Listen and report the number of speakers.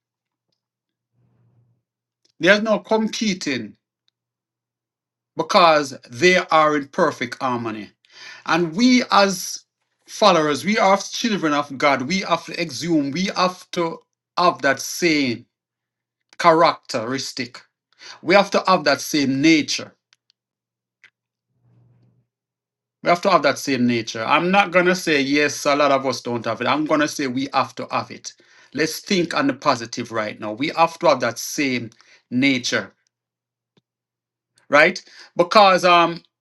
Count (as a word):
one